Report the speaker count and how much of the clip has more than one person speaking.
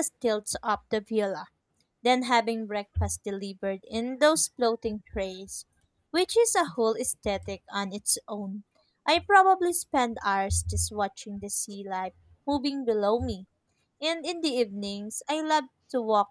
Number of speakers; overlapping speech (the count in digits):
1, no overlap